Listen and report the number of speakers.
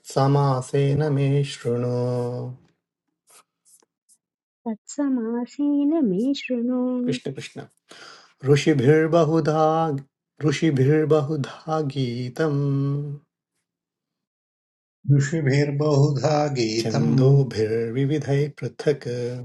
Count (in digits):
3